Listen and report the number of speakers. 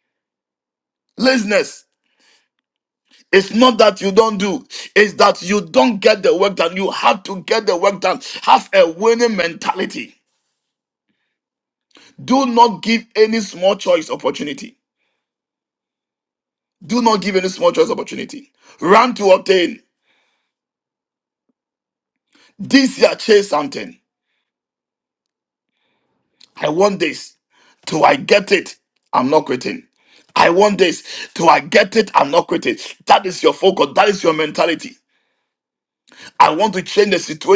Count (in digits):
1